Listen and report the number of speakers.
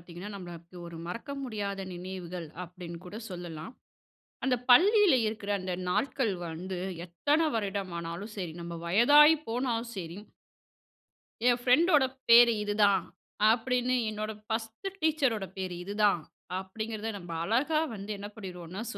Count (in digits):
1